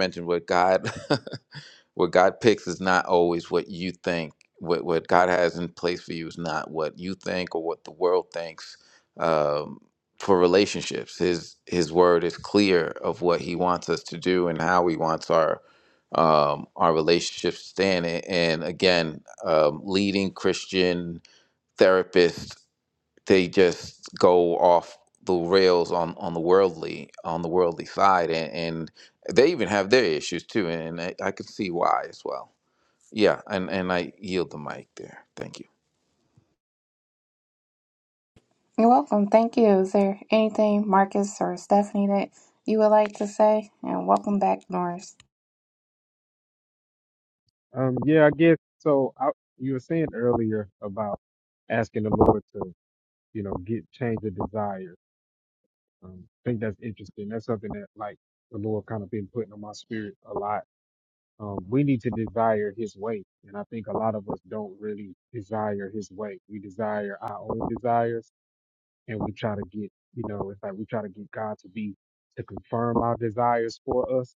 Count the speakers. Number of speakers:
3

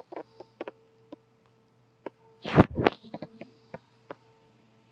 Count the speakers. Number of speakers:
0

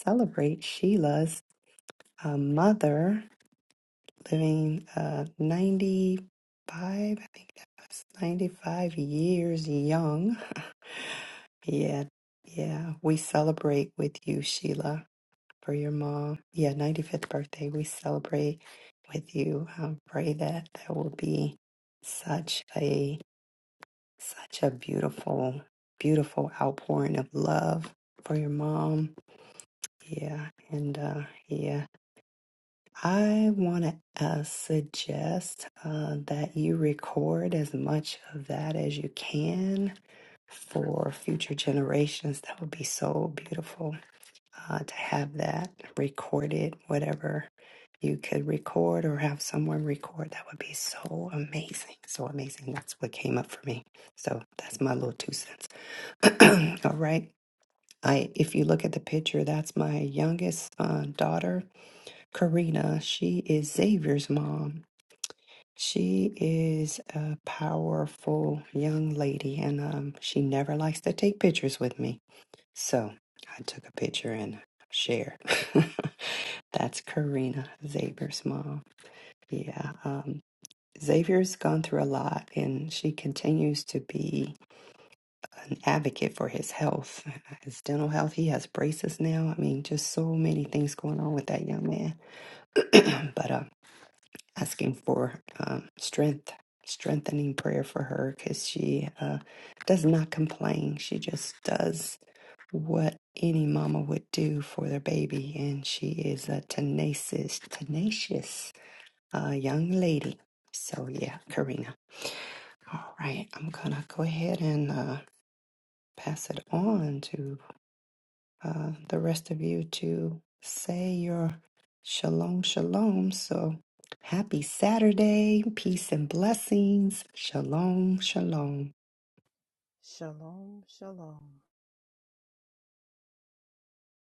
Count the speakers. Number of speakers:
2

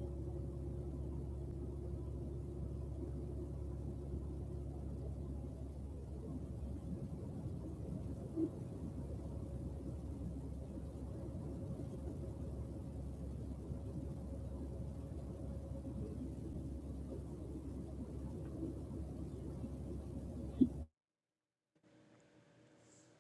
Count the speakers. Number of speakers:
0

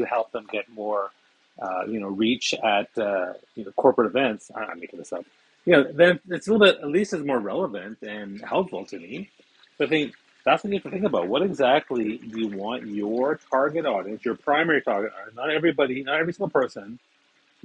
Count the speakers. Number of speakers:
1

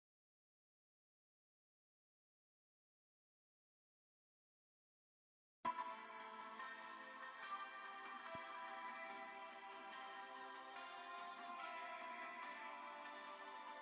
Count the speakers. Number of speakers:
0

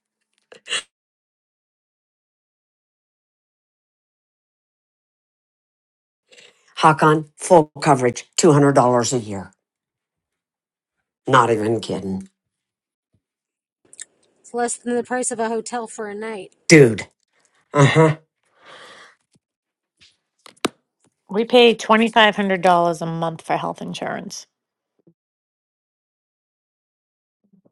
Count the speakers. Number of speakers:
3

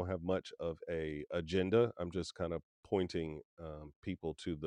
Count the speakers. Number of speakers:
1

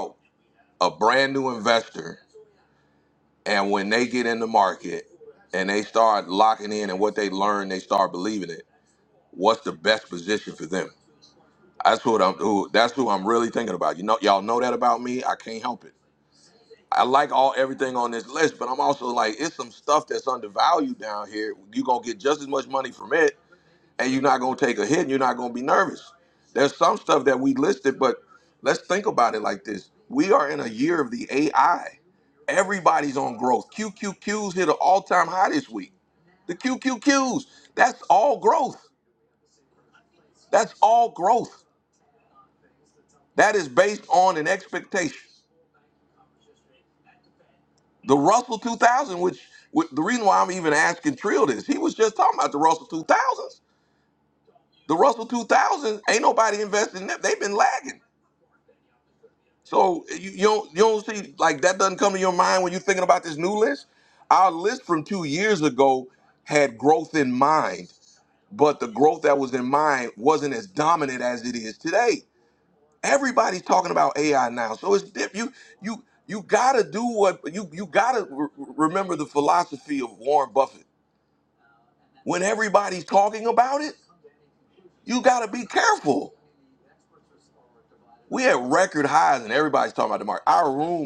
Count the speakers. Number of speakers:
1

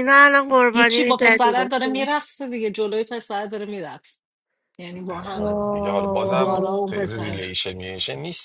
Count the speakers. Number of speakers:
3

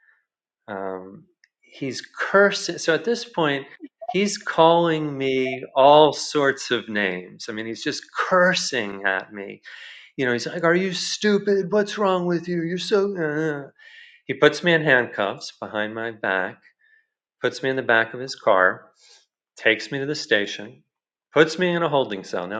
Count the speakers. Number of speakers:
1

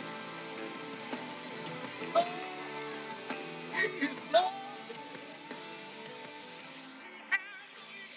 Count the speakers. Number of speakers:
0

